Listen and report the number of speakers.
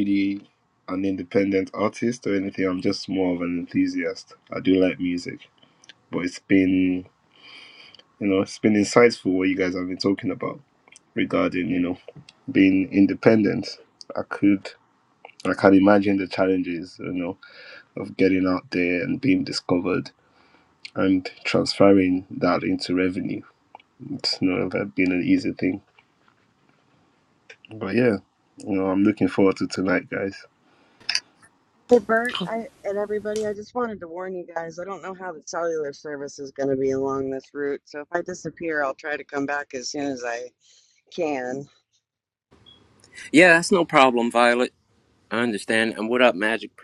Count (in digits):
3